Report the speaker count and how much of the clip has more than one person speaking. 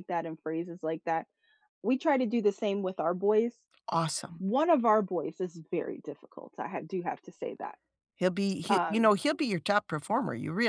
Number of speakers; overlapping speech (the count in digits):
2, about 4%